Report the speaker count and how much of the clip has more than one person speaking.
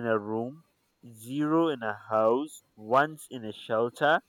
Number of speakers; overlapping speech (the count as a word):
one, no overlap